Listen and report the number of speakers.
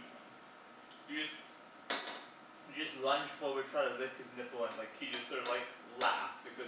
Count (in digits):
1